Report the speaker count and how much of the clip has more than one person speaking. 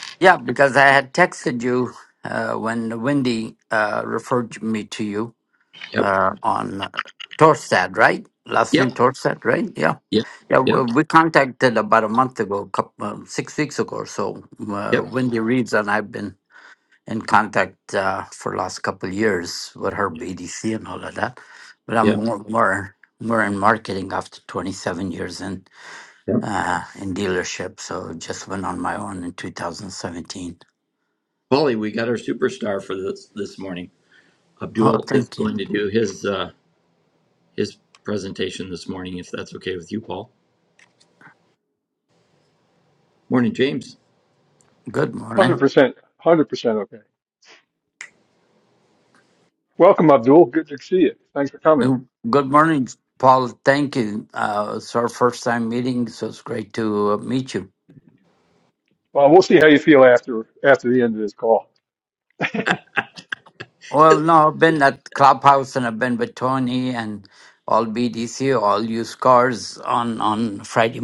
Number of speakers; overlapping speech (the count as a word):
three, about 3%